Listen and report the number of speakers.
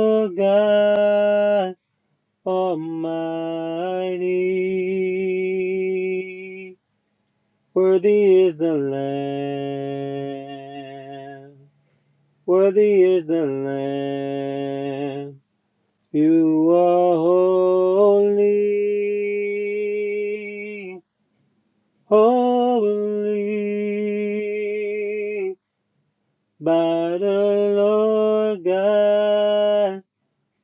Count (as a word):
one